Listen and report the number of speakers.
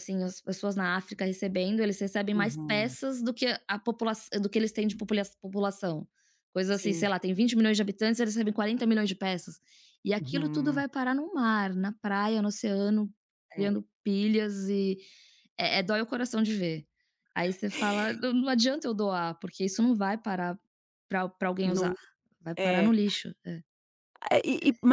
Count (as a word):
two